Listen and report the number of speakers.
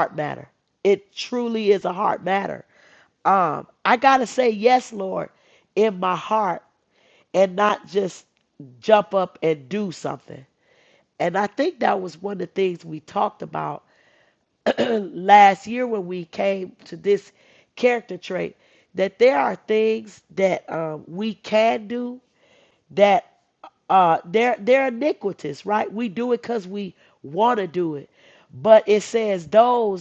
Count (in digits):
1